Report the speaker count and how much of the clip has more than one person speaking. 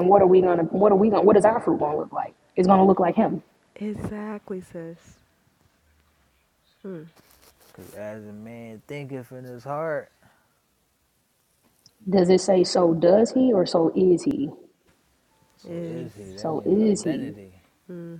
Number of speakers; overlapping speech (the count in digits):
3, about 8%